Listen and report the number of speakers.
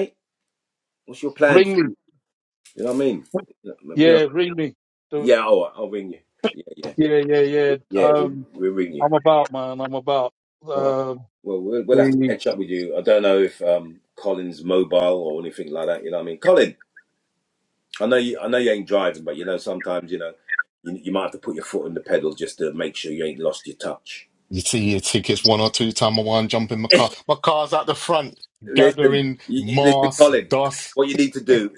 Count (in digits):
3